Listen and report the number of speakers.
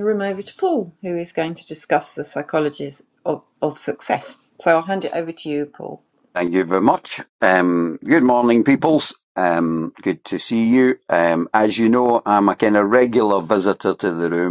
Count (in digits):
2